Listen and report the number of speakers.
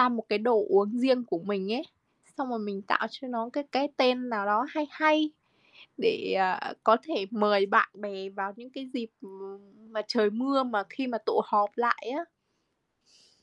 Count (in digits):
1